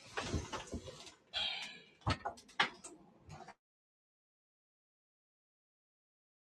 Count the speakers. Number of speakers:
zero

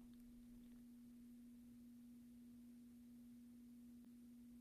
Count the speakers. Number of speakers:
zero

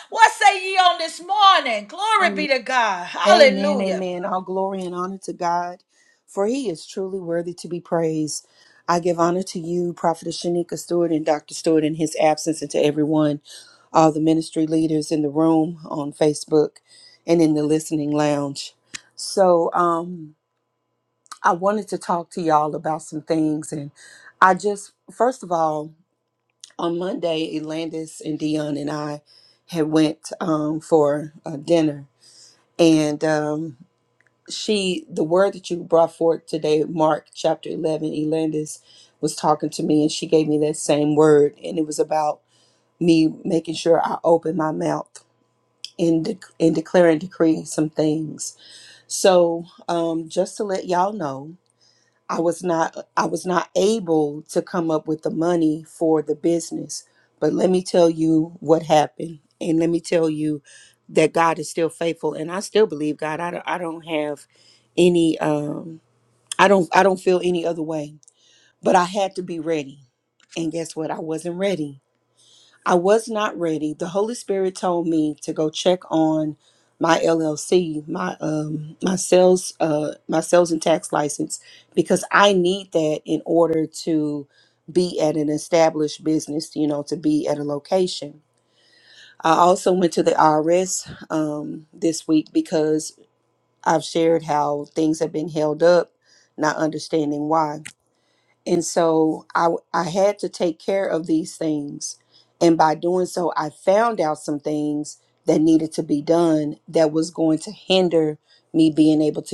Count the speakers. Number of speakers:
two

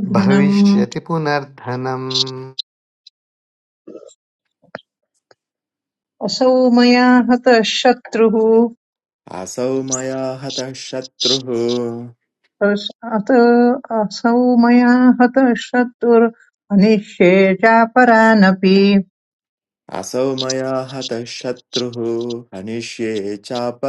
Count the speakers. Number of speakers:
three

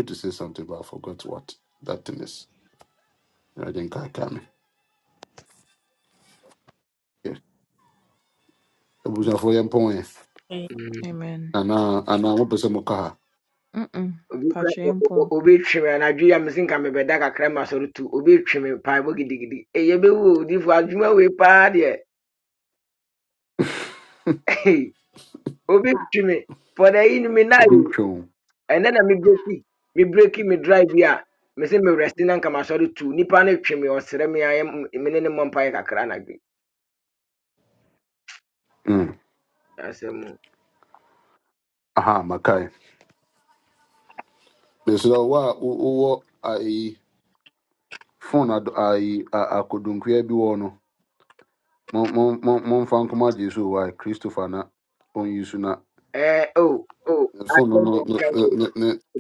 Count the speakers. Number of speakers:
three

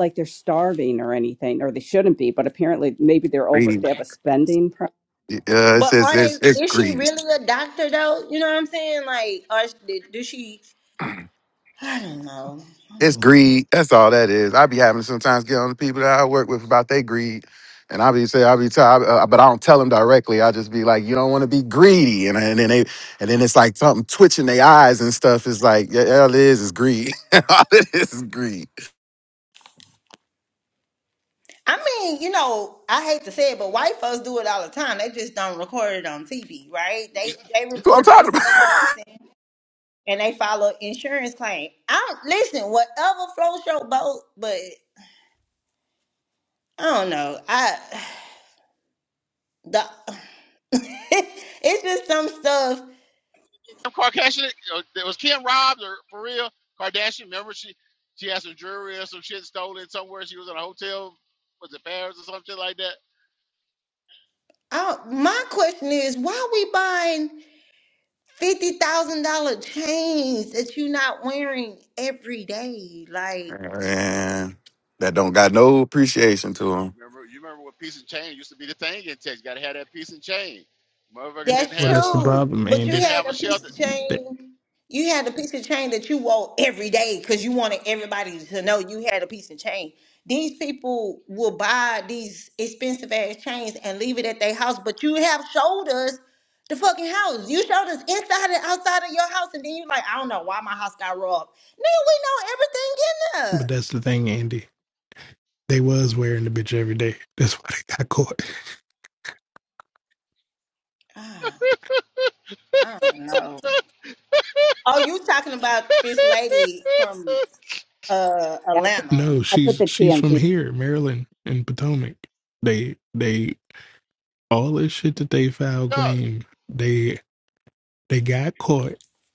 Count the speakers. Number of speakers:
five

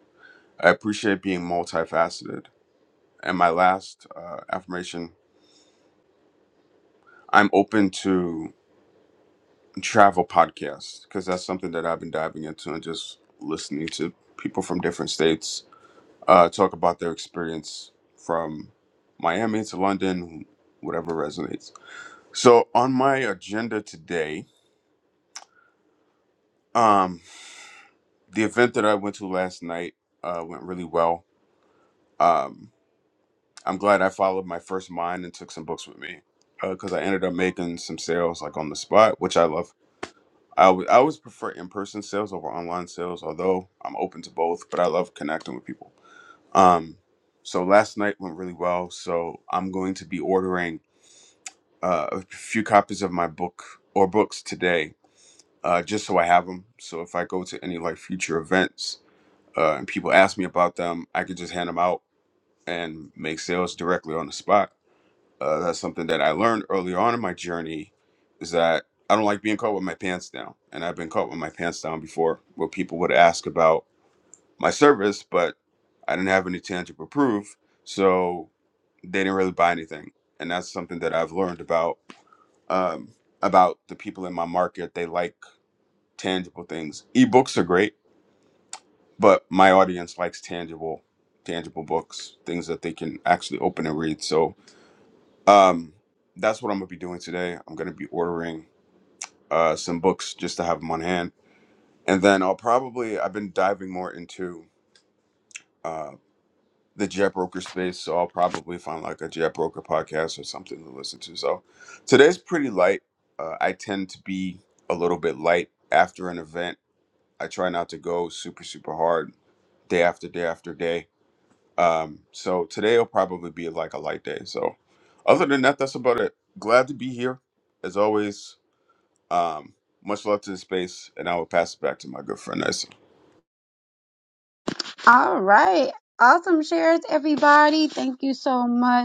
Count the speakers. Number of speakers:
two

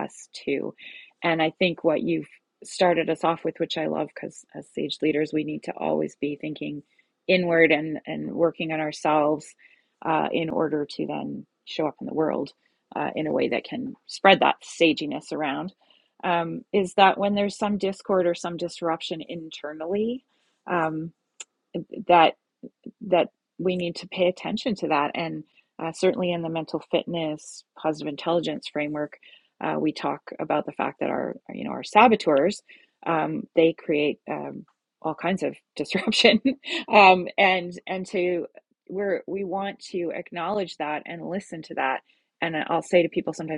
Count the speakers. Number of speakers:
one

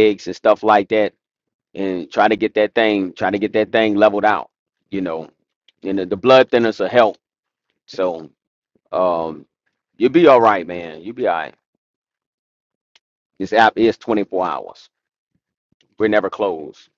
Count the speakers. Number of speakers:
one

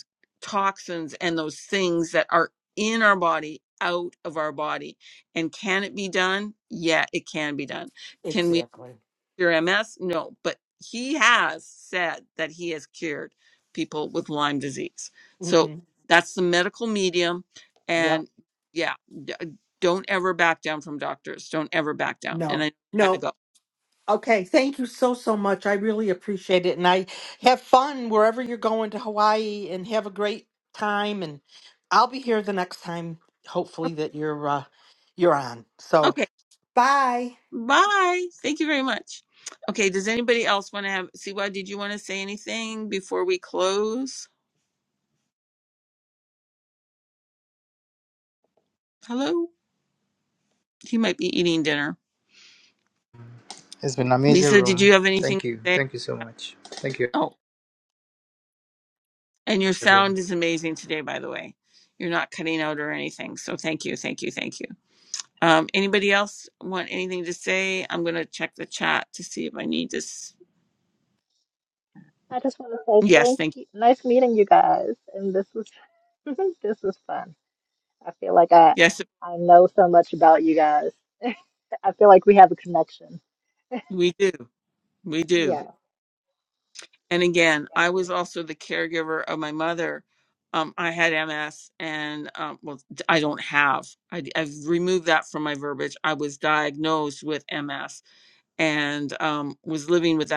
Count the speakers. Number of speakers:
four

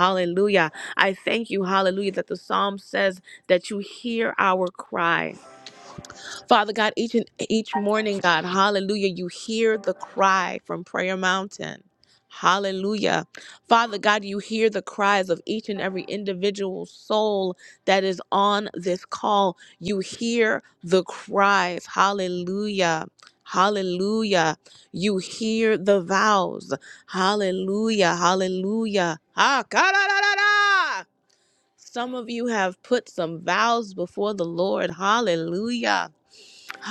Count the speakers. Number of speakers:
one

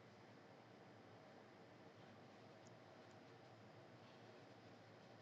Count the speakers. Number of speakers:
zero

